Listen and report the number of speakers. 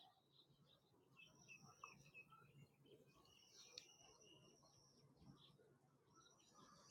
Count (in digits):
0